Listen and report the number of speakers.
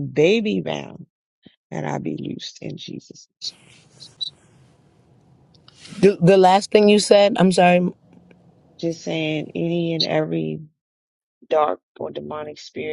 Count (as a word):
two